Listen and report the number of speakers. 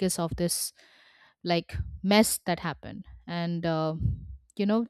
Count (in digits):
1